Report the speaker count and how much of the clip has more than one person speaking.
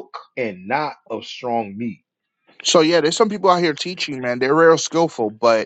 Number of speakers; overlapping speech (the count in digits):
2, no overlap